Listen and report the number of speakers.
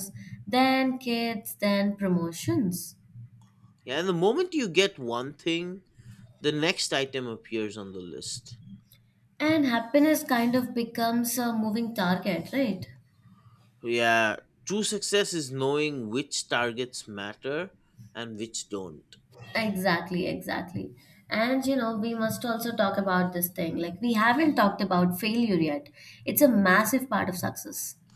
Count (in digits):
2